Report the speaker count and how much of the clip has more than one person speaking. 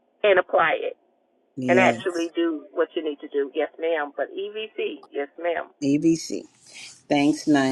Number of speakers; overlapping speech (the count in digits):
2, about 6%